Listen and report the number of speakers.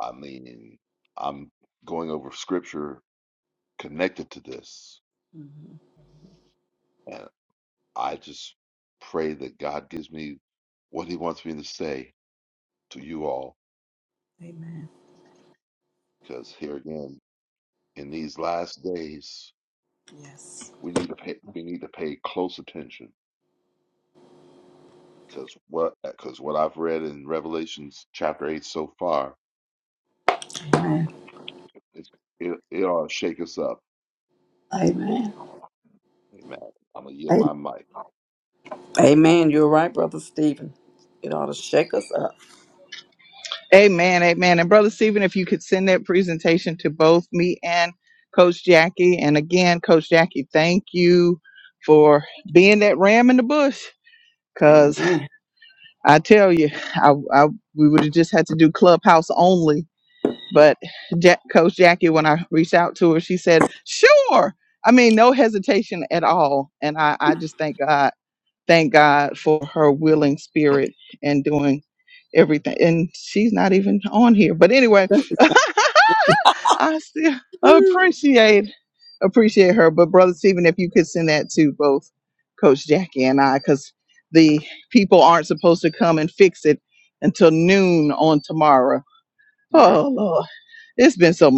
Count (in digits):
3